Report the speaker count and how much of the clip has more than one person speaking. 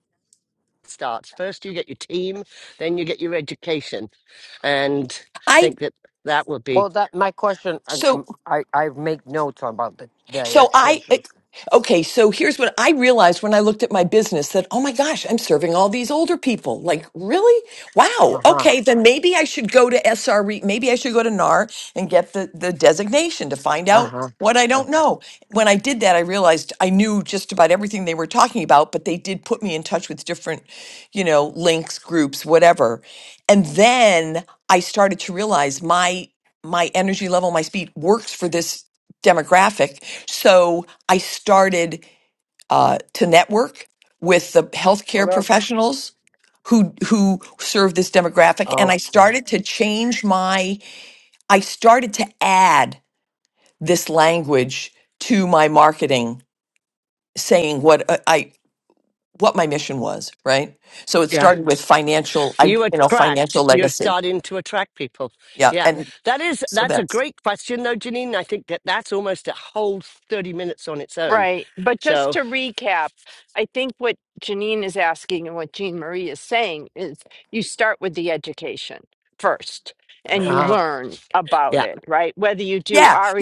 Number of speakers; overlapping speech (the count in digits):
4, about 8%